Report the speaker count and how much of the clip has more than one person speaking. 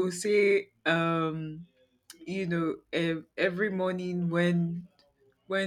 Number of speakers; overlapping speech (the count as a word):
one, no overlap